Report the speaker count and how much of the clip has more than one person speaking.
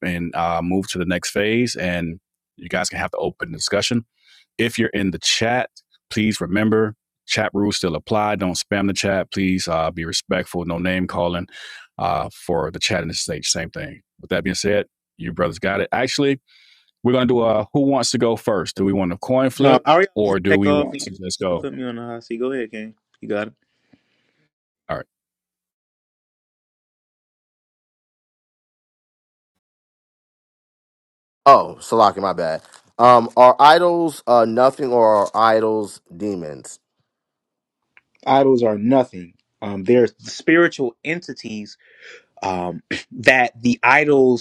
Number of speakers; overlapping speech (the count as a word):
three, about 4%